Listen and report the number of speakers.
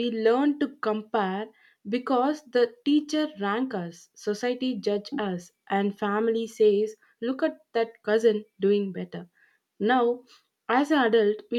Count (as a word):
one